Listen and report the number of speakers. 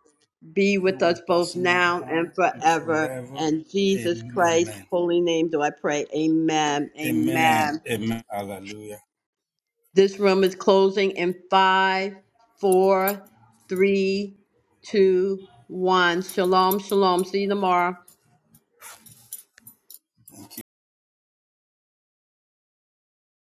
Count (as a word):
two